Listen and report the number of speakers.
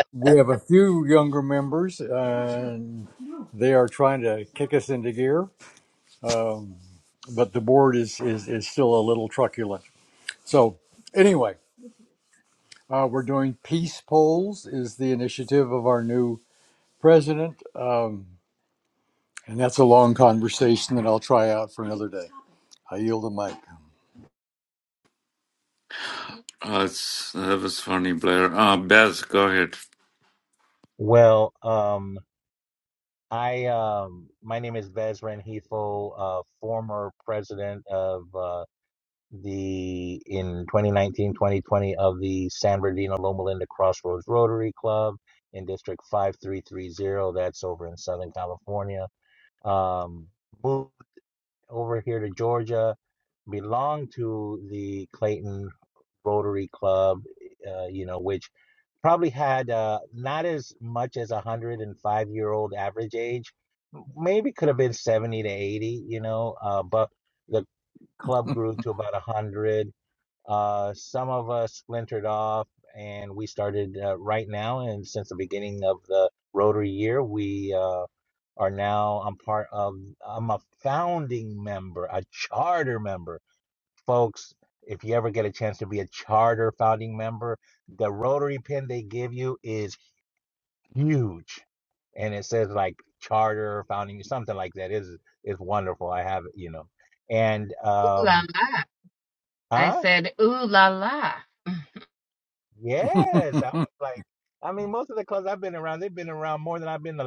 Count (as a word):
four